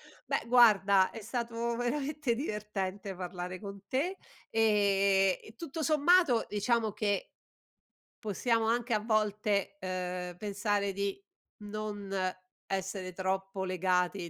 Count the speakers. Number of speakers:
1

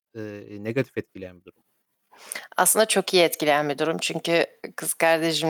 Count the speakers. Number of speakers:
2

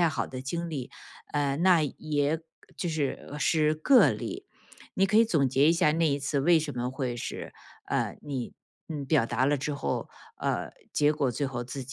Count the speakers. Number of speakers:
1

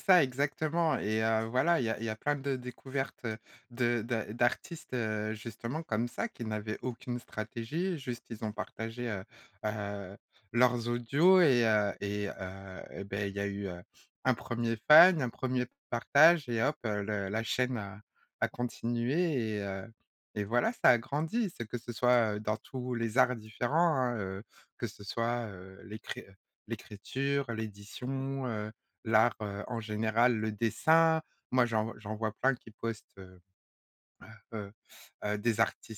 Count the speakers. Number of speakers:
1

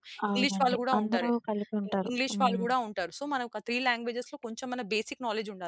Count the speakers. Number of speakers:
2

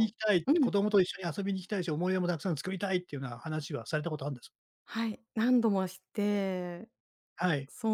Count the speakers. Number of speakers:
2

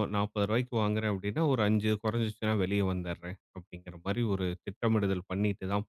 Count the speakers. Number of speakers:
1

